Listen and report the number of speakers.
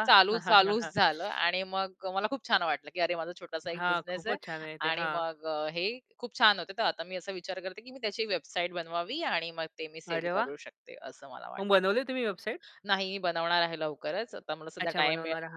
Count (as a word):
two